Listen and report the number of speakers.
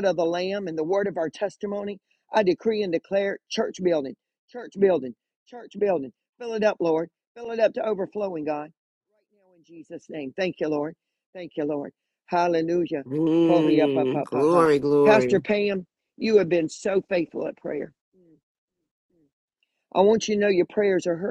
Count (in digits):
2